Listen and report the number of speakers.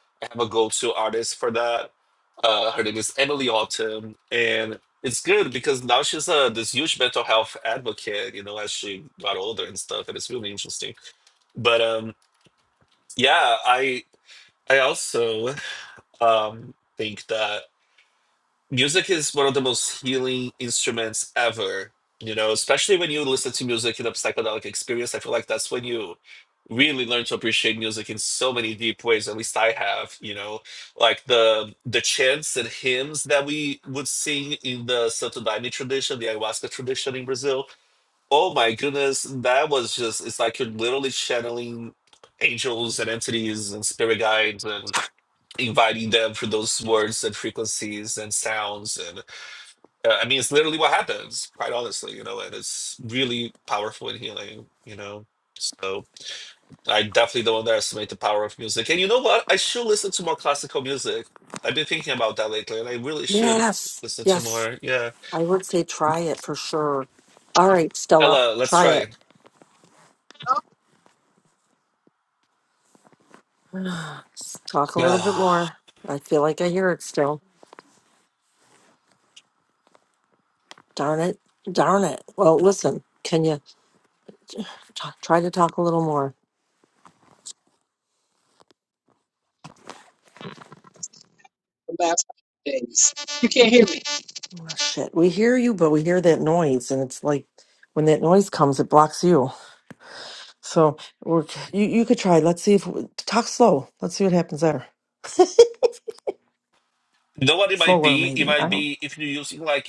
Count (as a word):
three